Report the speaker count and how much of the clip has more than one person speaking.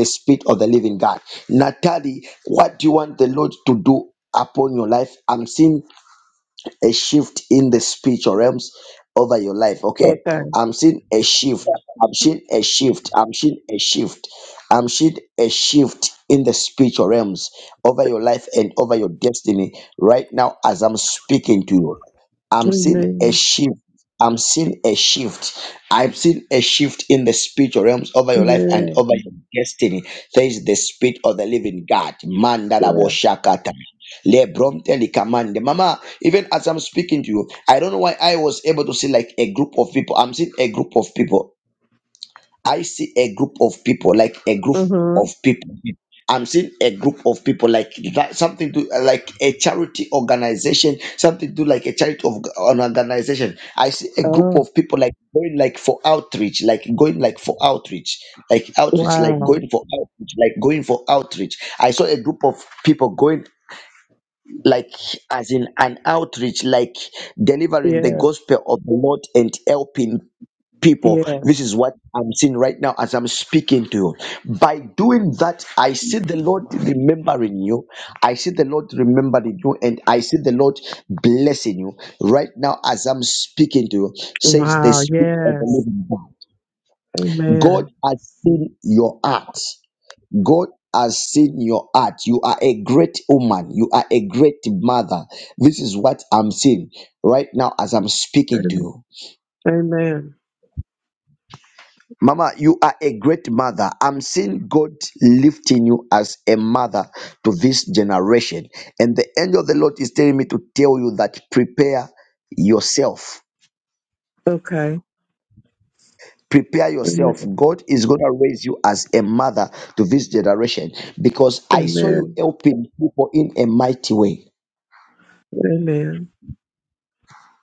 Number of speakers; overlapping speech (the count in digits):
2, about 5%